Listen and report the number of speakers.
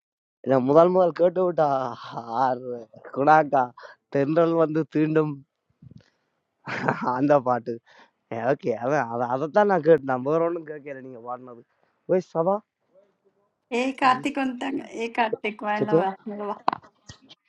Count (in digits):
2